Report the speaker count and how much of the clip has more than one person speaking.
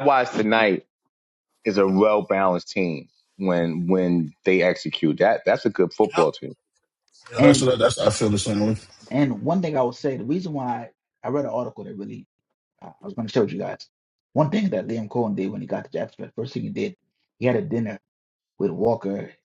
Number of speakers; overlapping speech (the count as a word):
three, about 2%